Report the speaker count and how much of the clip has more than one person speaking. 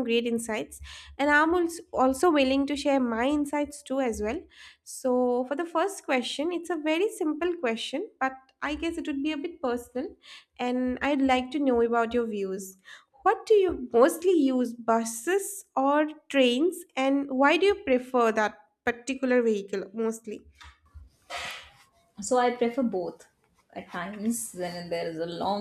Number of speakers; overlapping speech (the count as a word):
two, no overlap